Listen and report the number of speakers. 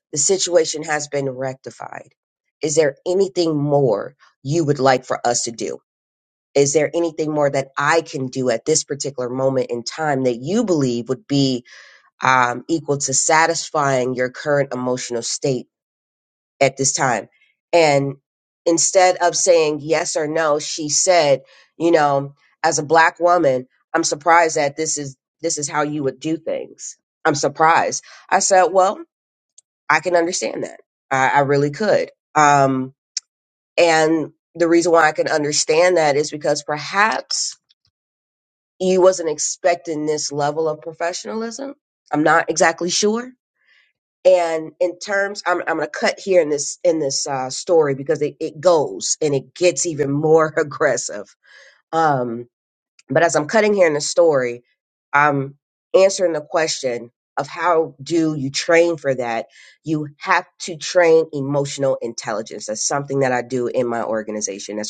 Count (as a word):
one